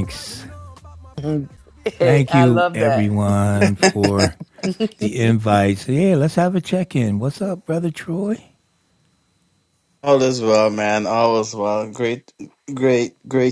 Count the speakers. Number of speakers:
3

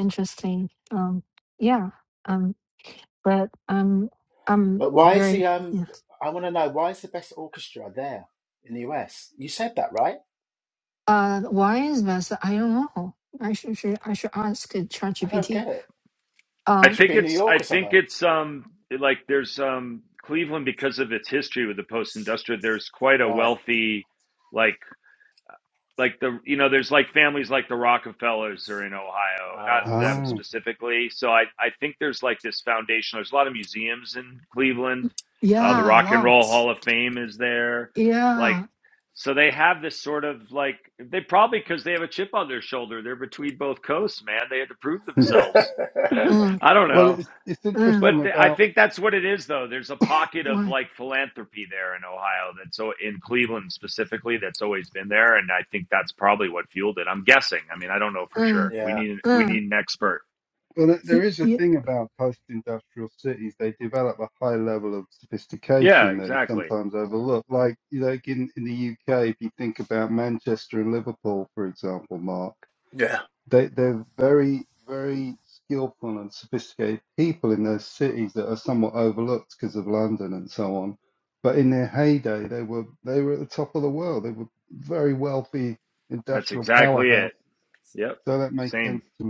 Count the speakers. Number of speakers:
4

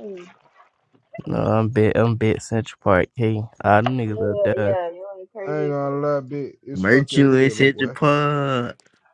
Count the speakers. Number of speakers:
4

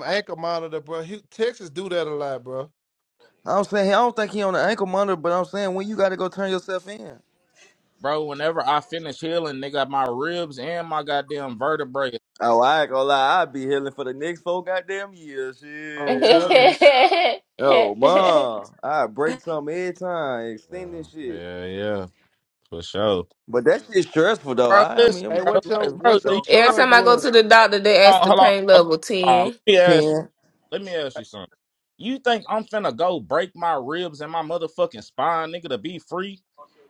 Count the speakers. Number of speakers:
4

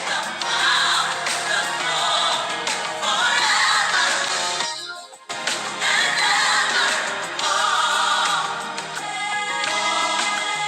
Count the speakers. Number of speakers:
0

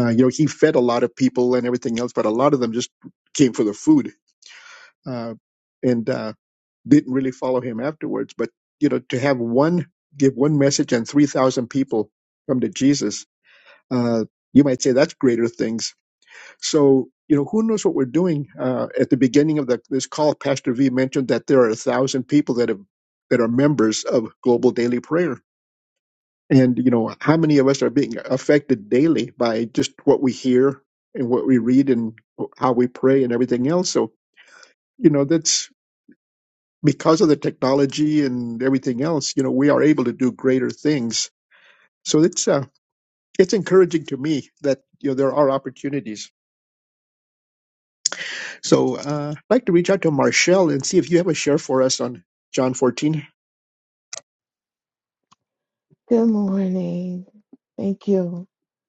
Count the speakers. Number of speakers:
2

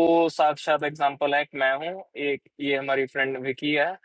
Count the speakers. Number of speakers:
1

